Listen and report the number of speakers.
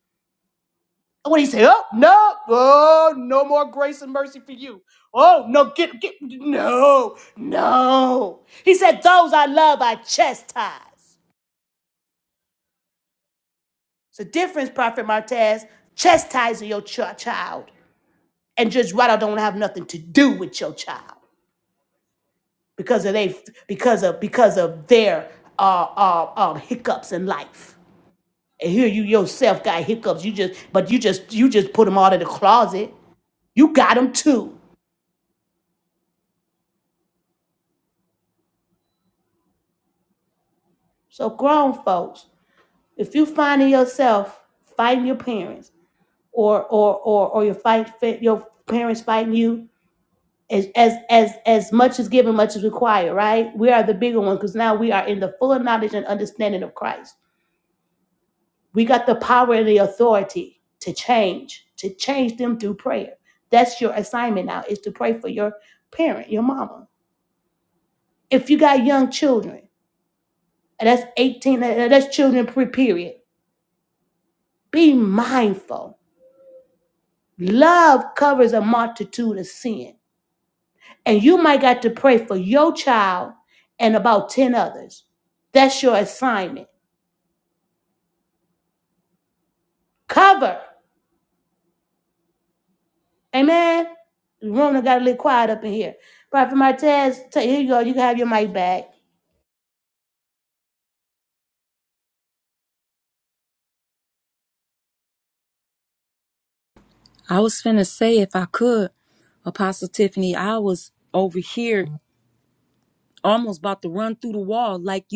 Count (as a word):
two